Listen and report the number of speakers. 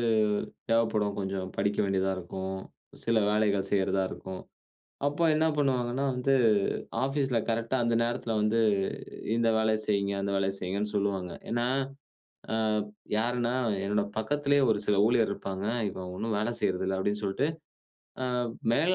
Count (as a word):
one